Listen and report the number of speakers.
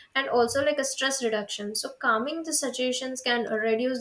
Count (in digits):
1